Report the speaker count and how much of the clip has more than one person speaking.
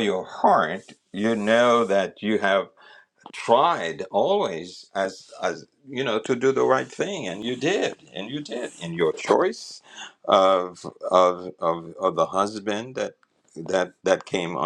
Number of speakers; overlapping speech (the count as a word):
one, no overlap